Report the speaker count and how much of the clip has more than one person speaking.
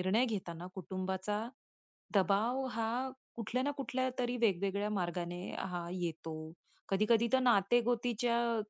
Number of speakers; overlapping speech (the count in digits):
1, no overlap